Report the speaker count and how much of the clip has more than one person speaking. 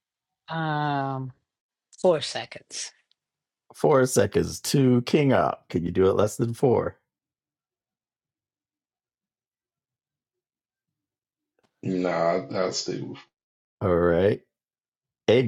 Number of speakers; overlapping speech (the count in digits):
3, no overlap